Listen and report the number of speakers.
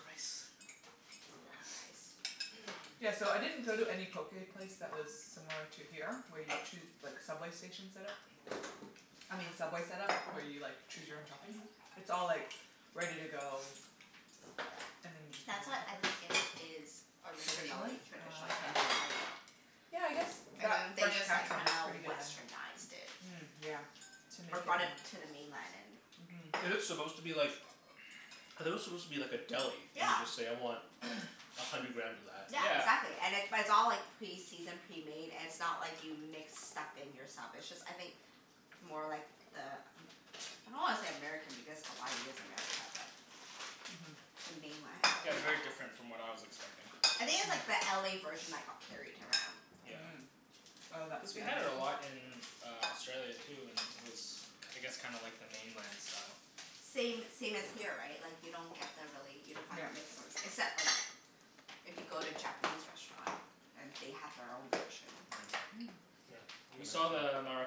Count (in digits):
4